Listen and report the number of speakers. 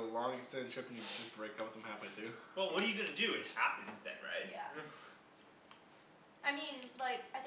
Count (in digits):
3